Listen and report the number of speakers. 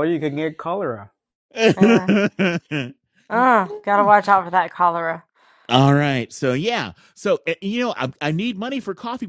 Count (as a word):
three